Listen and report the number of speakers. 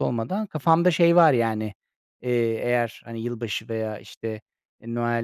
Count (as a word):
one